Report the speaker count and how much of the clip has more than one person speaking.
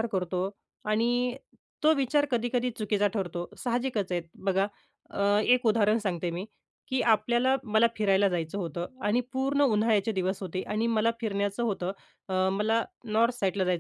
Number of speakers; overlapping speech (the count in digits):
1, no overlap